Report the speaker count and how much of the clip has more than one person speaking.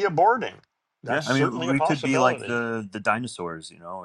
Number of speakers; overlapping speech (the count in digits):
2, about 36%